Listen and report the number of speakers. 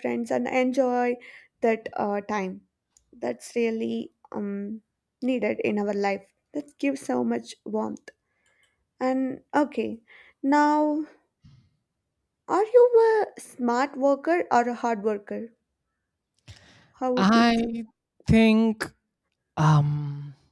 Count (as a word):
two